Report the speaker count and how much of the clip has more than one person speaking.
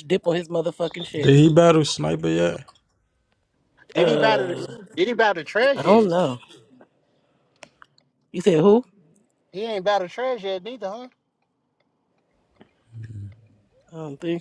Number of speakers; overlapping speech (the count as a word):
three, about 7%